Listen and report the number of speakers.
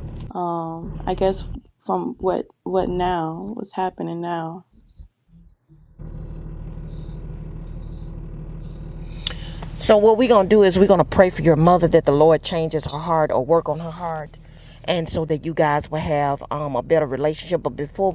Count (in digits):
2